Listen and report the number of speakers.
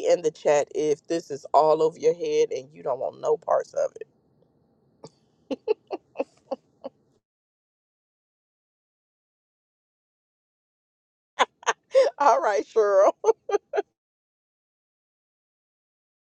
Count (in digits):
1